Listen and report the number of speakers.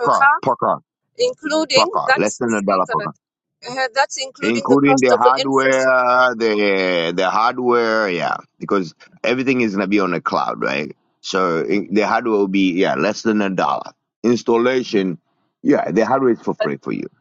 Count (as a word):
two